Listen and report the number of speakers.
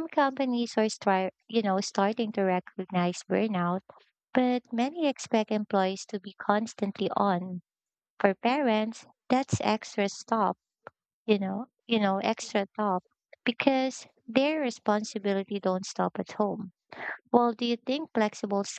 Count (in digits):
1